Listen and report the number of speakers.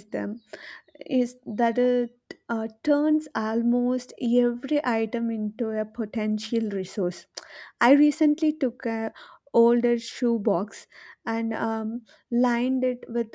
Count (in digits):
1